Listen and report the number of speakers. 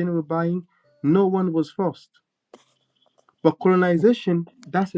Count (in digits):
1